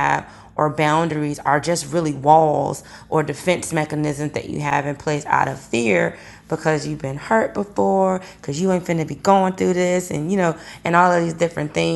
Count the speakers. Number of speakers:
1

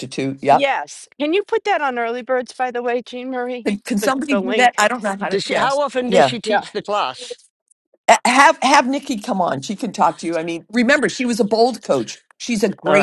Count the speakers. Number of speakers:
3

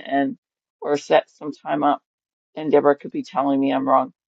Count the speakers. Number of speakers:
1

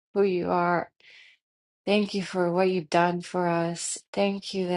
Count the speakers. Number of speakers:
1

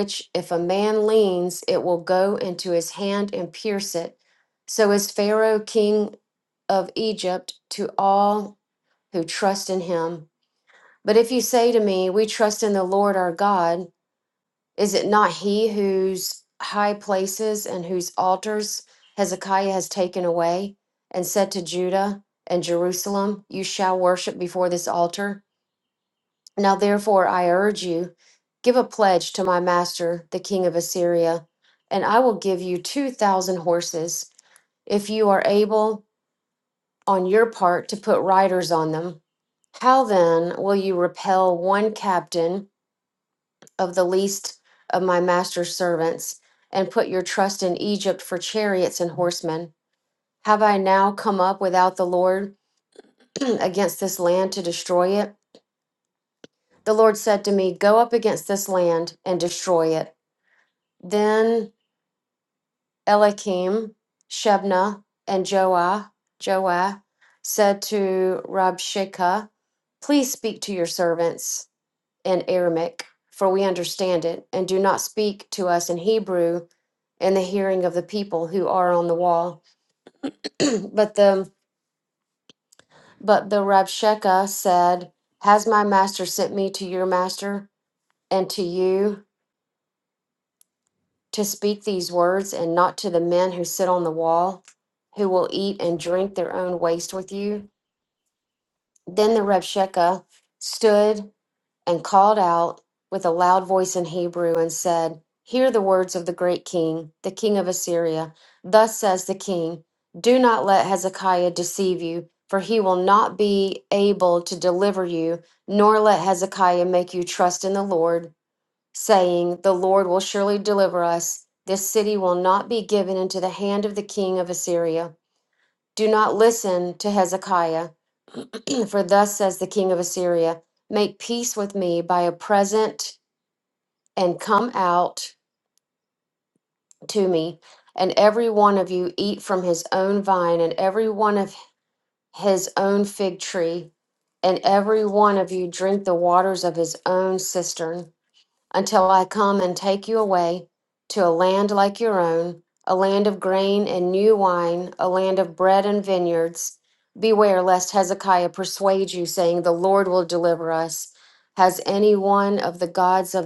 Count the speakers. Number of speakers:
1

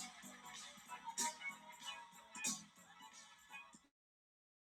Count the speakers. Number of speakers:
0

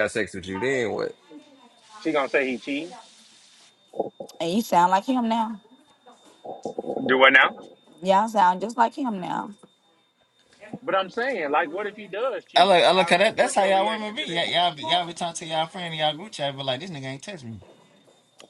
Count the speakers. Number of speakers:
4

